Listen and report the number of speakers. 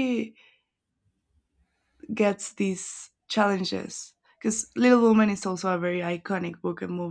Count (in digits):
1